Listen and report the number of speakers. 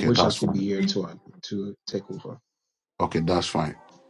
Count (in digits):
2